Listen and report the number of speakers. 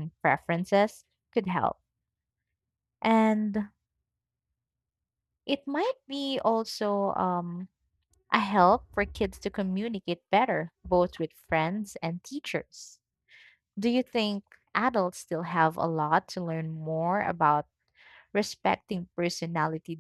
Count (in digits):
1